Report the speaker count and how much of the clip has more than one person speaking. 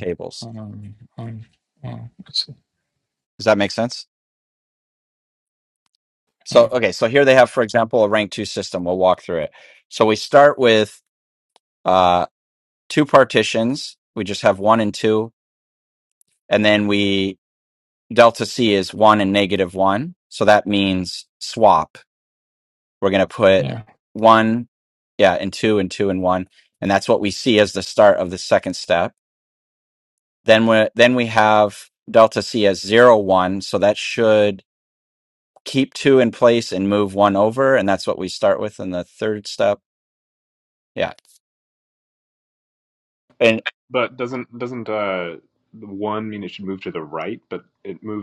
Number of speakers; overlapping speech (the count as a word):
three, under 1%